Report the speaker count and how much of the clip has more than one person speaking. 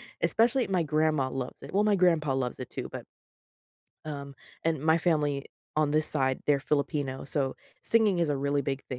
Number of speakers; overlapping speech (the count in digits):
1, no overlap